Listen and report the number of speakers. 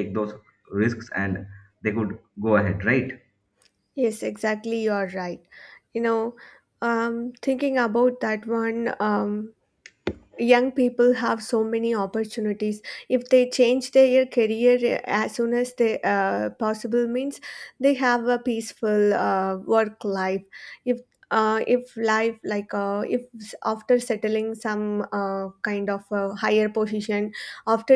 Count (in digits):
2